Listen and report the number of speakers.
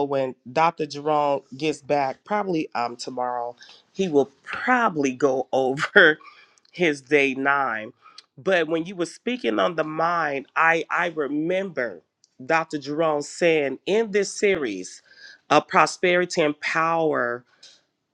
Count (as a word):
one